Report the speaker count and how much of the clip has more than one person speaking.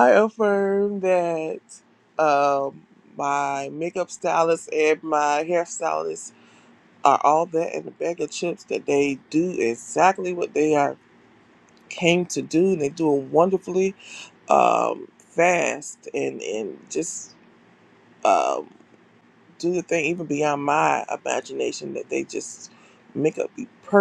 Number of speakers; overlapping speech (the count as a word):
one, no overlap